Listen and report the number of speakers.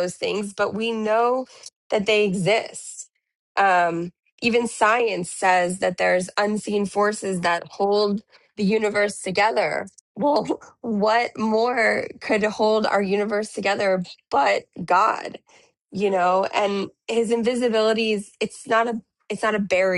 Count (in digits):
1